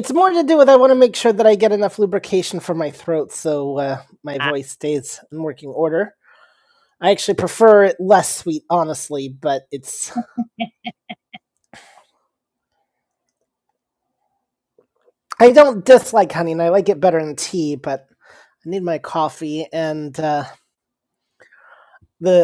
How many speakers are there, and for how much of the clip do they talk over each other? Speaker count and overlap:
one, no overlap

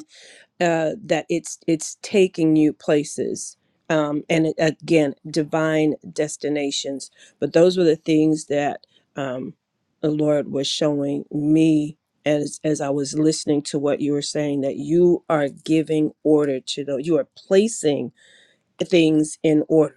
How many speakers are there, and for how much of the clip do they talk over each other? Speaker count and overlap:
one, no overlap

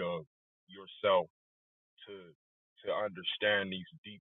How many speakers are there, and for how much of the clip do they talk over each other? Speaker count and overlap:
one, no overlap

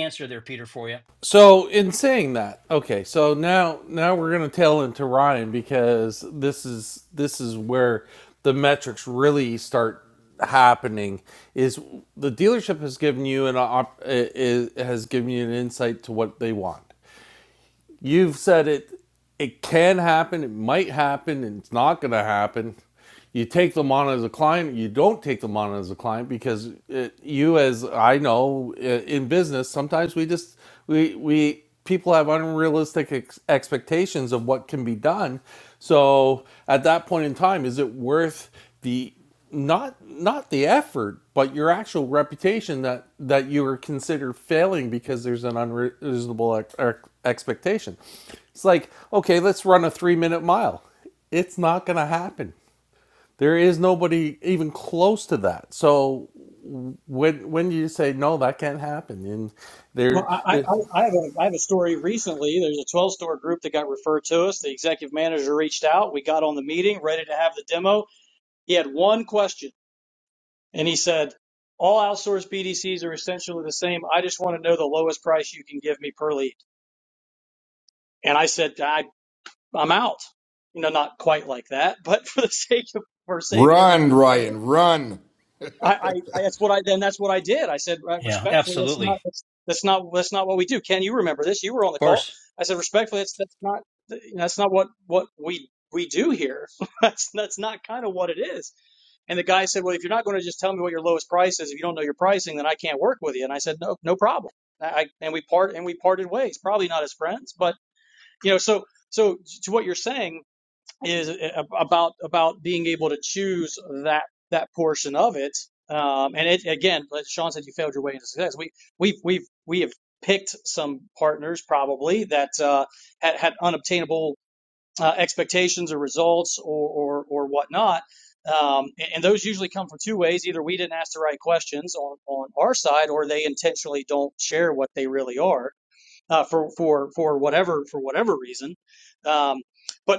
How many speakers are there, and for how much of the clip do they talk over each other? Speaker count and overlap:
four, about 2%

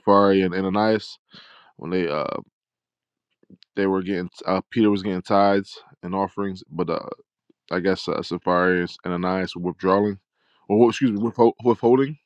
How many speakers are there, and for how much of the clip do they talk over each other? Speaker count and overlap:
one, no overlap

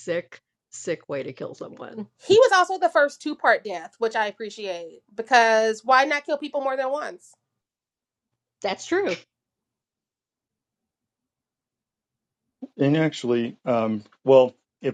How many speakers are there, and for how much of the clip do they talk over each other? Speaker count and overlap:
three, no overlap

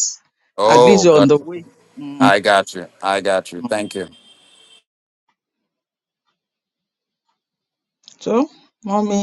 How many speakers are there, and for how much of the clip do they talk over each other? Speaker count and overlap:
two, about 10%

